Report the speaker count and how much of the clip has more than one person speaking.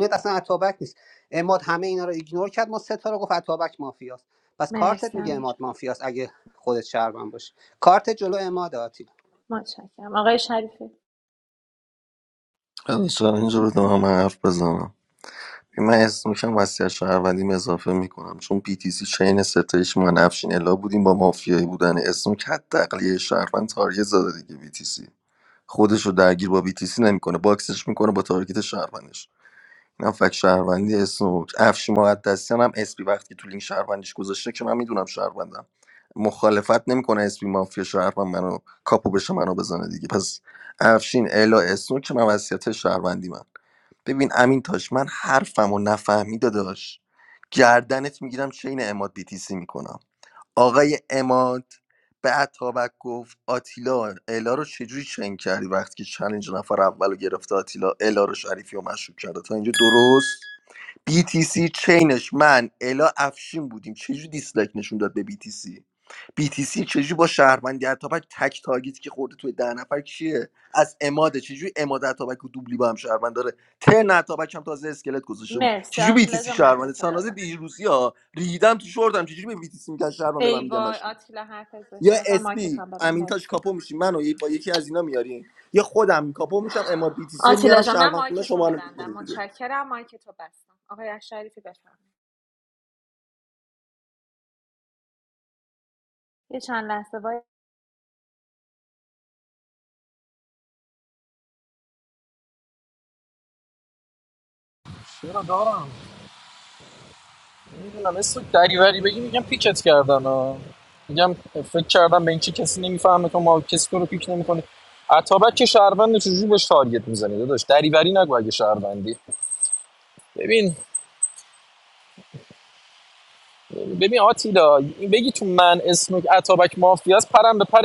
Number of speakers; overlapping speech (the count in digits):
4, about 5%